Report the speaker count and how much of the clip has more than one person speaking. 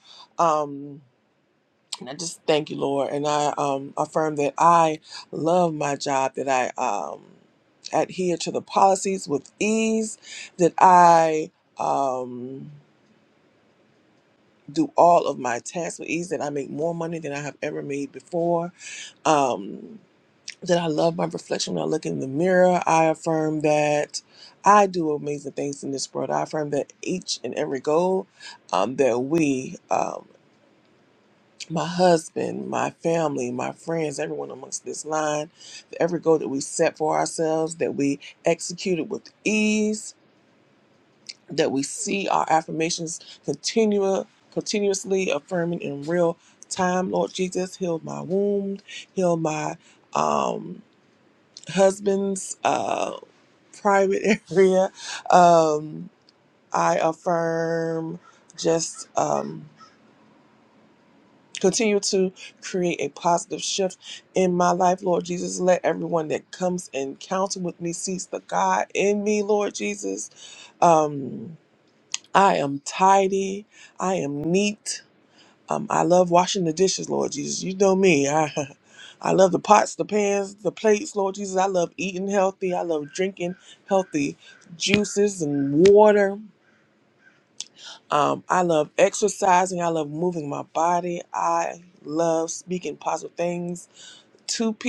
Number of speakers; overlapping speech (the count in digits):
1, no overlap